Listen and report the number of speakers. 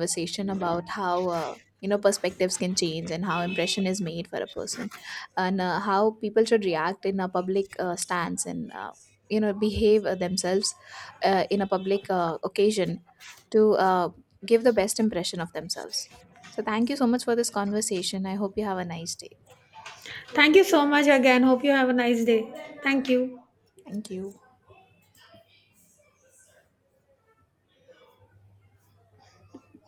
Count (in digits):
2